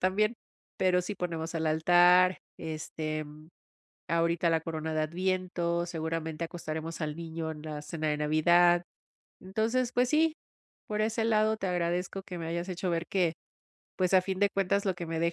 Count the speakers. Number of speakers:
1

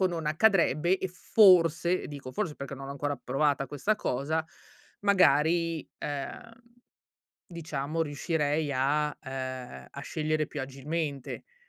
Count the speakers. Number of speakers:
1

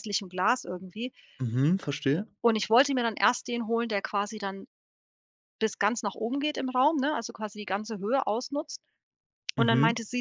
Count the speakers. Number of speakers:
2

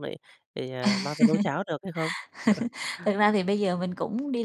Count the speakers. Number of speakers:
2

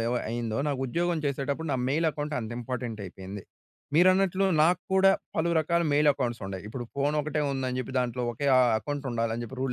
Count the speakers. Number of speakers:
1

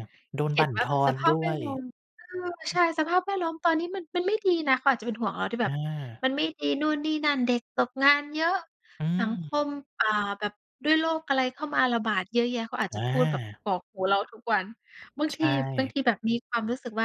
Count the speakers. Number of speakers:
2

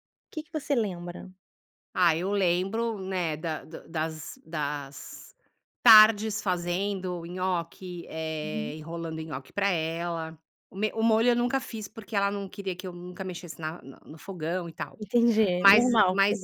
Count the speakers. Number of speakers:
2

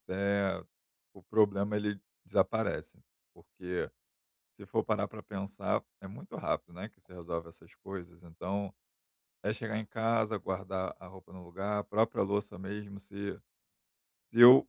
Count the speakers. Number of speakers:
1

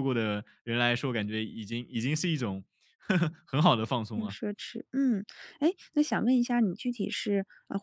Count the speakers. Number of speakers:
2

